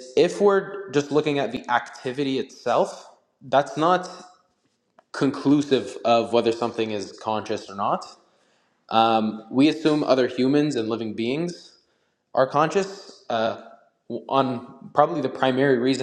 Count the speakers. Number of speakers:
one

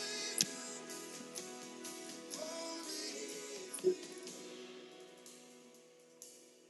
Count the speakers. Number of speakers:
zero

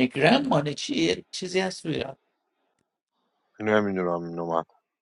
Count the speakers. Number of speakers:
two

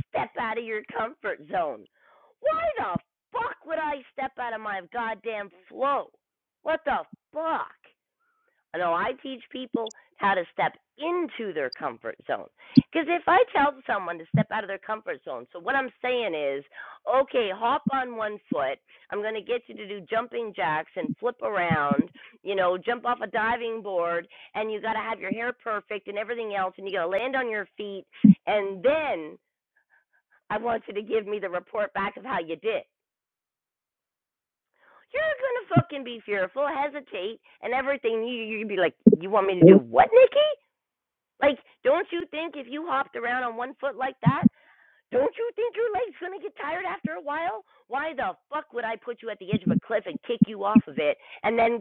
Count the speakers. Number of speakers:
one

